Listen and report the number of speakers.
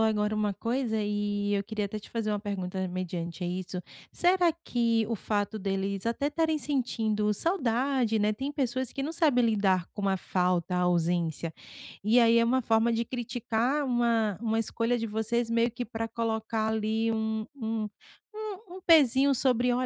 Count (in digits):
1